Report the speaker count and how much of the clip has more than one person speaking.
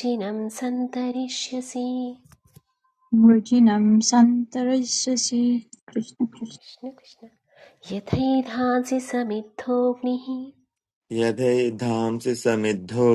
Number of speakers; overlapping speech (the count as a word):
three, no overlap